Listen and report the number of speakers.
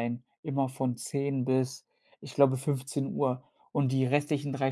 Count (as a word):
one